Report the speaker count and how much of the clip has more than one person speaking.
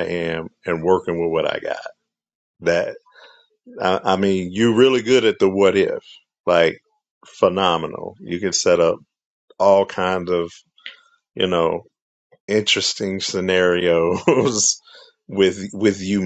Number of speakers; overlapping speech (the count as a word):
one, no overlap